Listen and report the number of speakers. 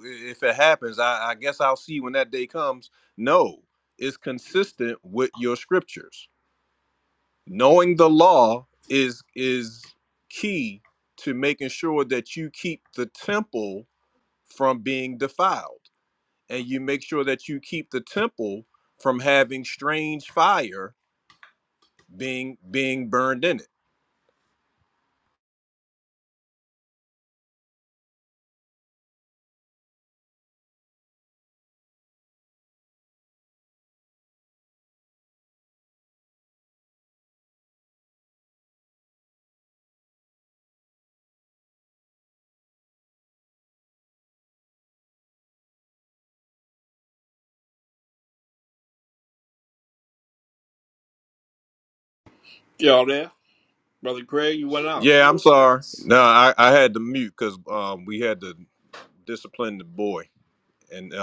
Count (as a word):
two